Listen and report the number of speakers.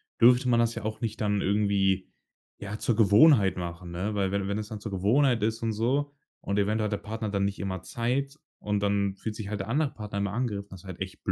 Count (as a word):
one